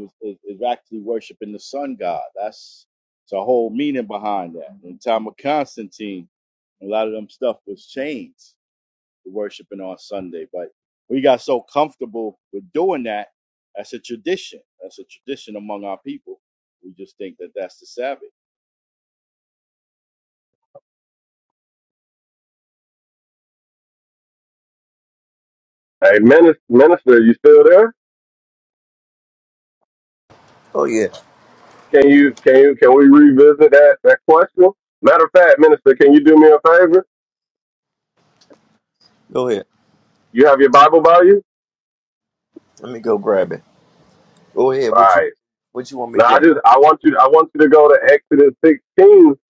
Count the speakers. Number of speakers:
3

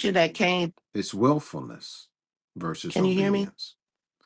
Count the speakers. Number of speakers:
2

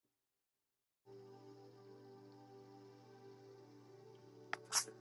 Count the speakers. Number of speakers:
0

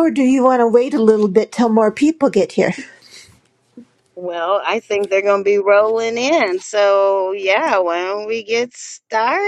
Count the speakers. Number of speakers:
2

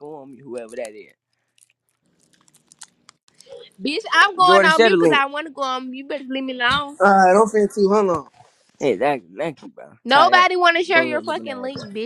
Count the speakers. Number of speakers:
3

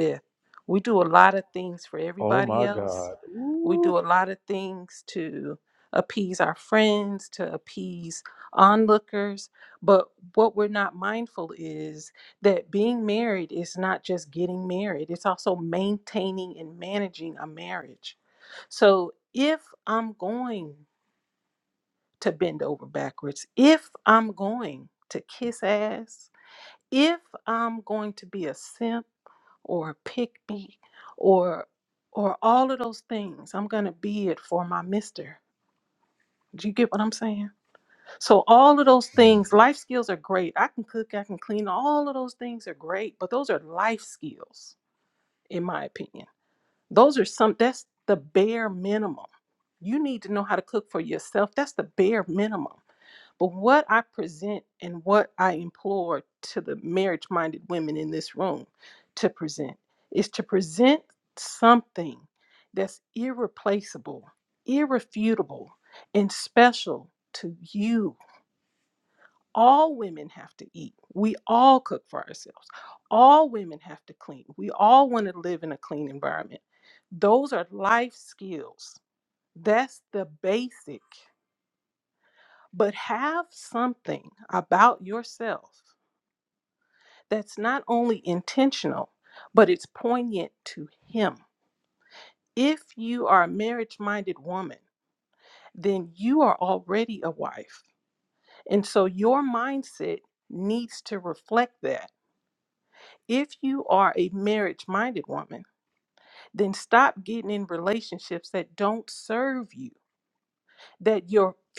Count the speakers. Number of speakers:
2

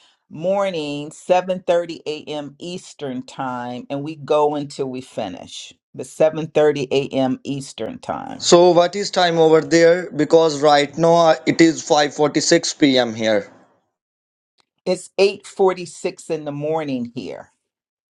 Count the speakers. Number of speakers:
2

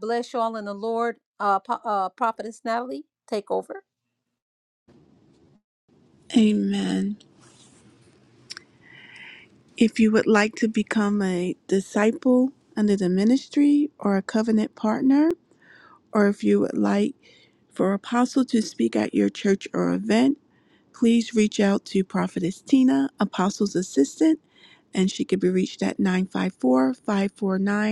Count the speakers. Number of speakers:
2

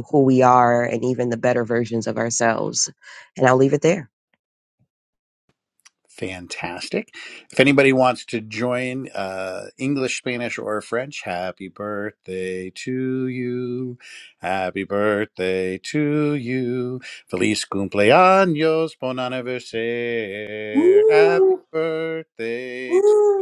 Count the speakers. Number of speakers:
3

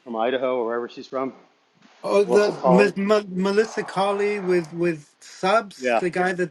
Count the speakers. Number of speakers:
2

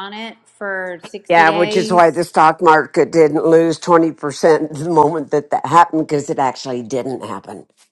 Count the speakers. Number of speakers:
2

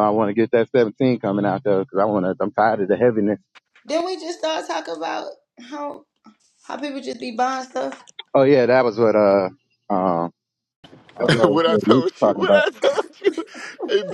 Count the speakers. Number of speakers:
3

